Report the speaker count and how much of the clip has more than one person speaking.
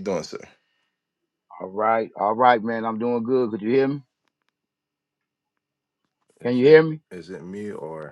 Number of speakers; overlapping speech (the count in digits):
2, about 4%